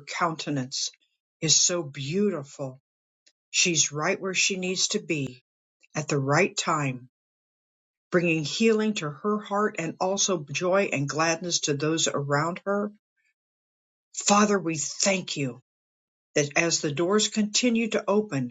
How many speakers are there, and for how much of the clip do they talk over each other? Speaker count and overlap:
1, no overlap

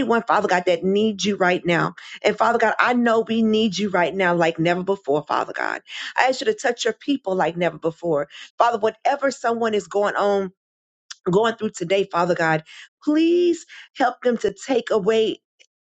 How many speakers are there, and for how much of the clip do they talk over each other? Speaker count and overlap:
1, no overlap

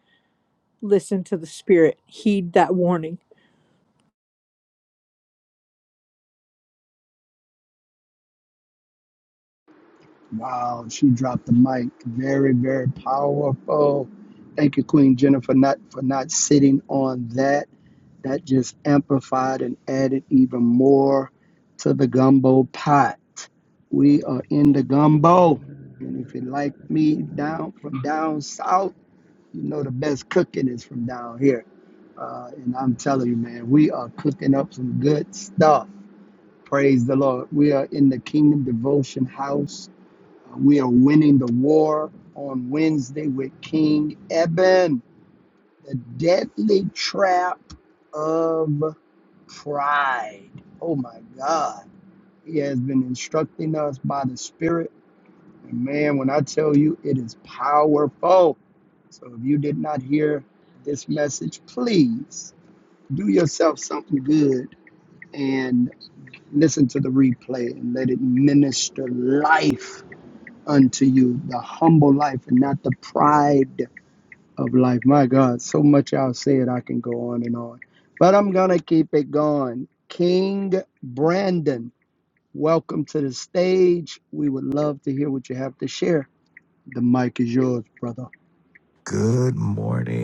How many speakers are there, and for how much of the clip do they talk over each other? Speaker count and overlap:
3, no overlap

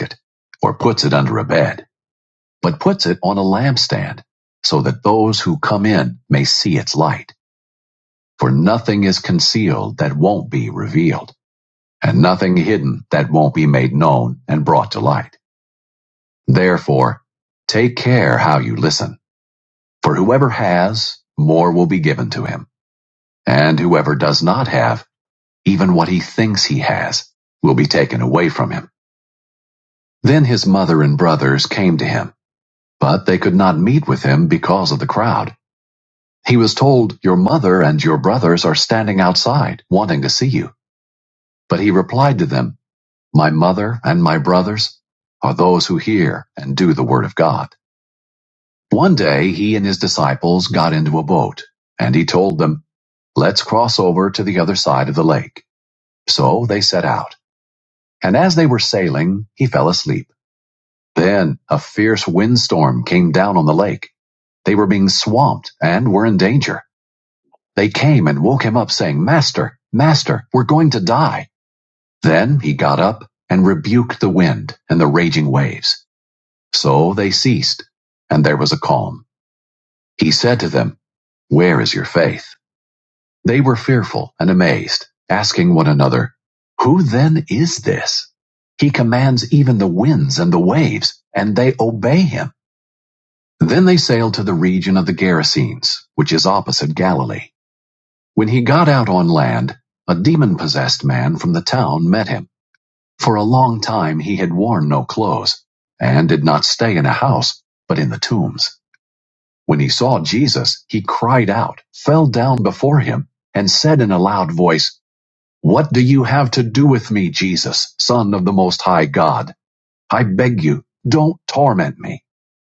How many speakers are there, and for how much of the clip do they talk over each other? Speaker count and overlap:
1, no overlap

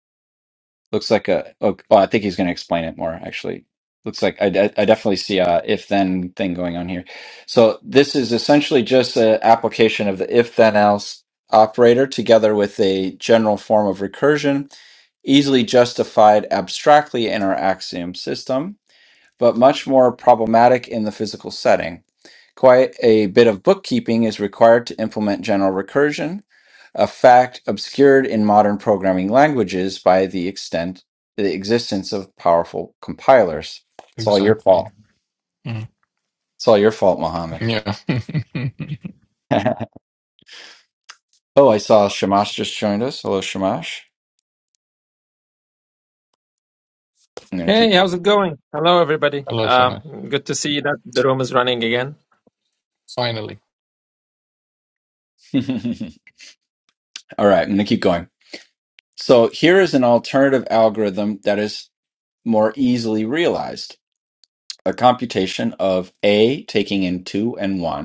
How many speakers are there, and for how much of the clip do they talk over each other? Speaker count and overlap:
3, about 2%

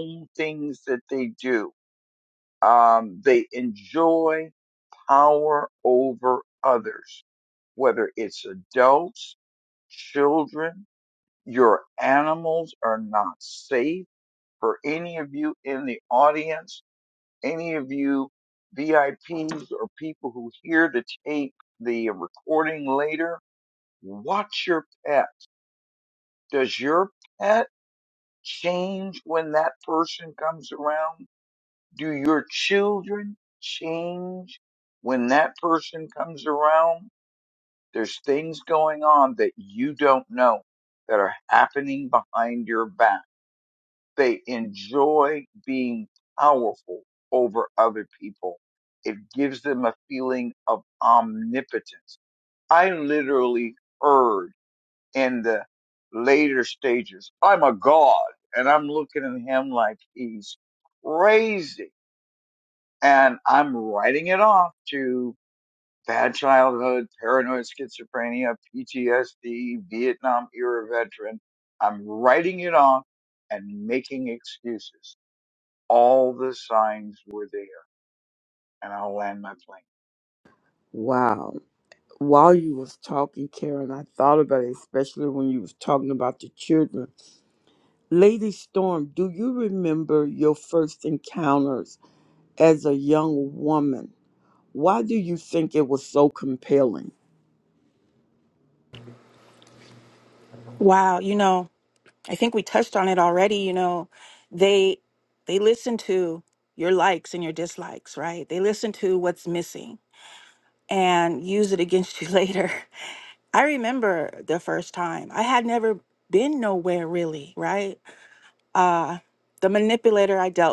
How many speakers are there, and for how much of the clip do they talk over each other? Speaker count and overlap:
3, no overlap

